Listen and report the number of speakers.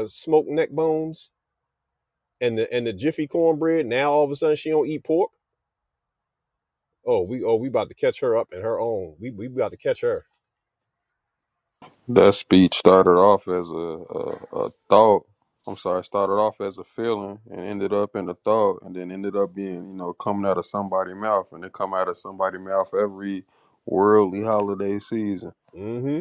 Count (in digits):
2